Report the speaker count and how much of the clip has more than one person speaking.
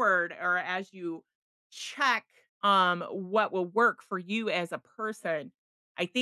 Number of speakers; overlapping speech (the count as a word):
one, no overlap